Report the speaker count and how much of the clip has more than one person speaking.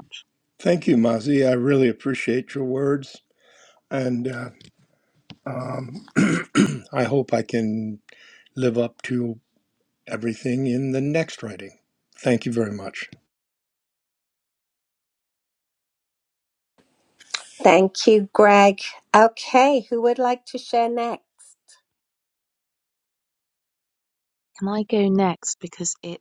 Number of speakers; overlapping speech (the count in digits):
3, no overlap